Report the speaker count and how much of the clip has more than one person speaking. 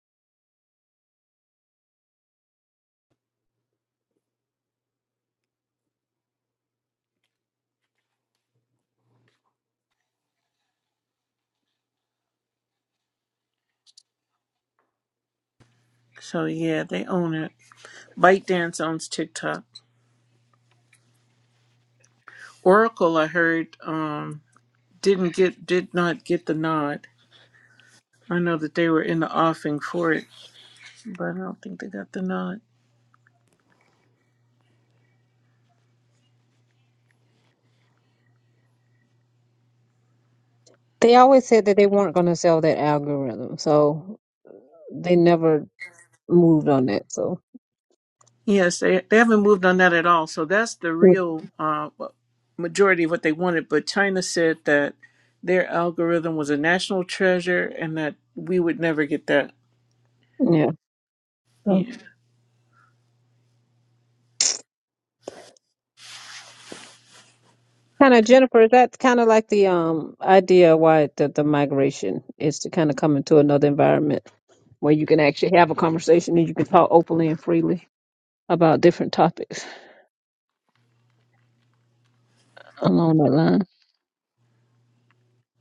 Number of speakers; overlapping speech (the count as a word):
two, under 1%